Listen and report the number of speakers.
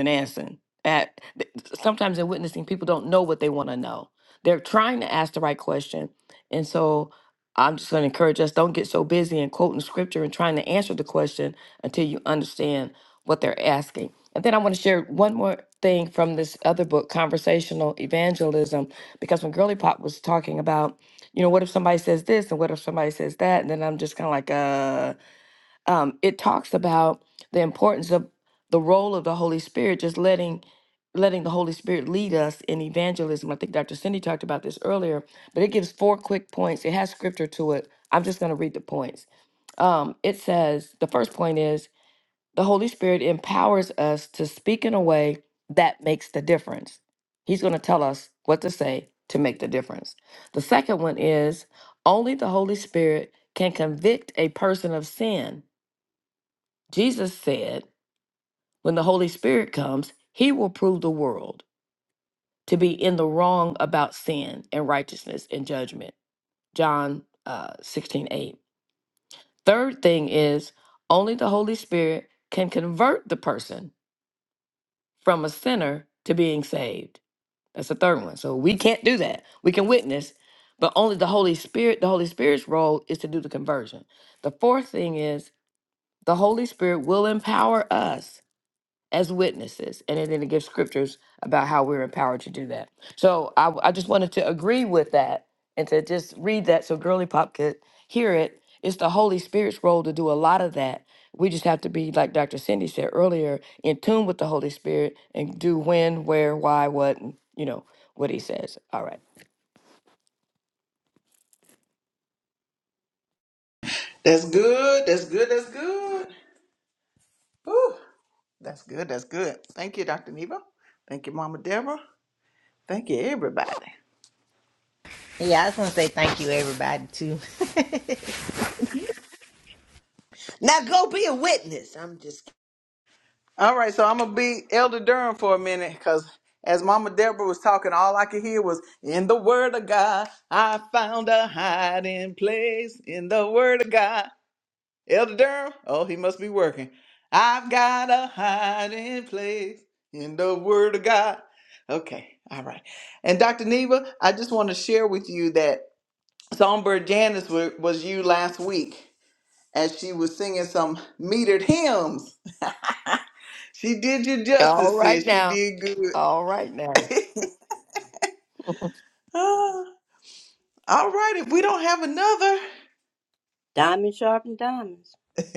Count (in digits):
5